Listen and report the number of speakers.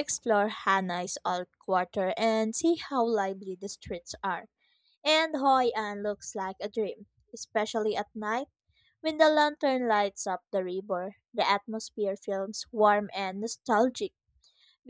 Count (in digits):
1